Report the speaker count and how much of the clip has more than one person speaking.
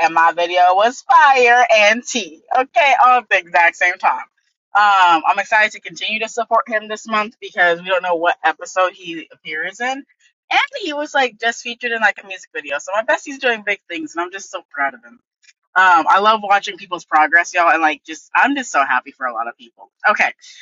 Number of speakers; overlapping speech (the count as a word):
one, no overlap